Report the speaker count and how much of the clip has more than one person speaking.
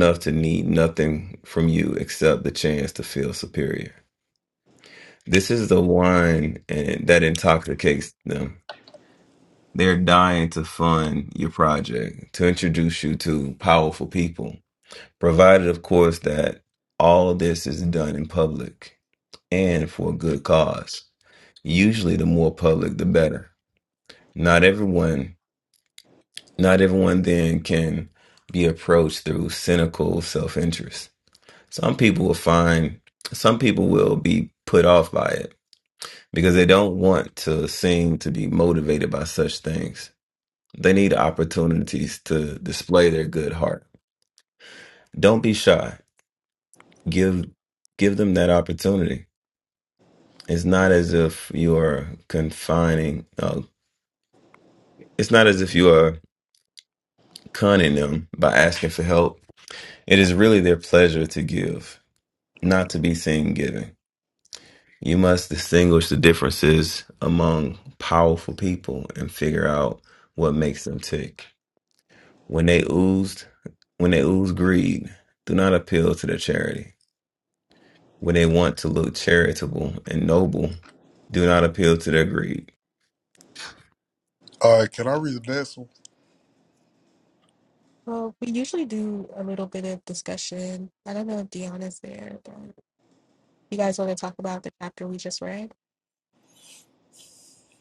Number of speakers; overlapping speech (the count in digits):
3, no overlap